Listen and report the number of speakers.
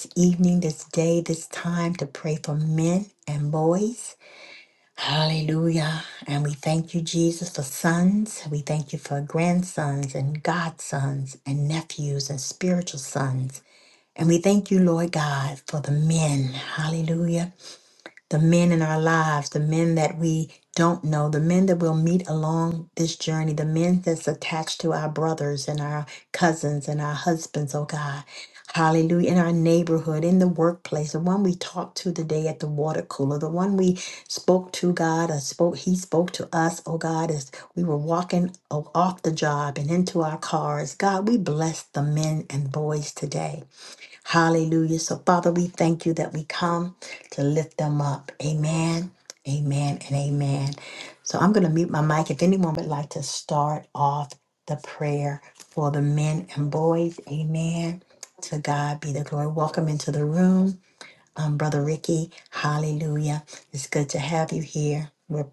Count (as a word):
one